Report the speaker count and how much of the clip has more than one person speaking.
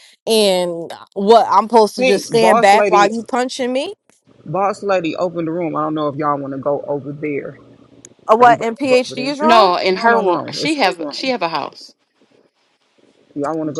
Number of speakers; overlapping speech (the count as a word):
three, about 27%